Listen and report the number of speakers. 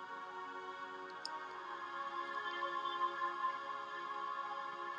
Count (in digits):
0